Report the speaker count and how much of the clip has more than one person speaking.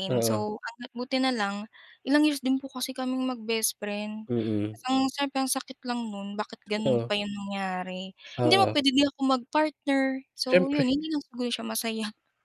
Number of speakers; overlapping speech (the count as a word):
two, about 11%